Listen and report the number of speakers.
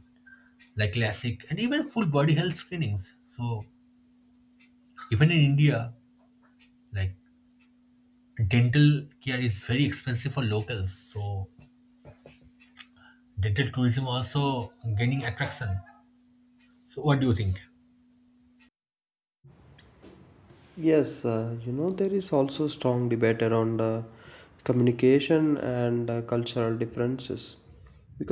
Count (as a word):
two